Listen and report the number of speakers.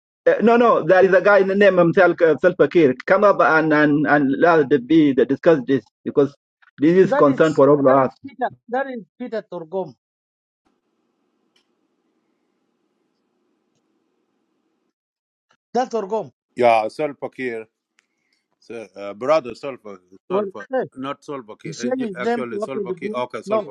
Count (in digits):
3